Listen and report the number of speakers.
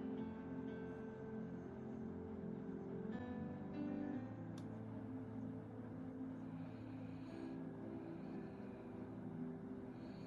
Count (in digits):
0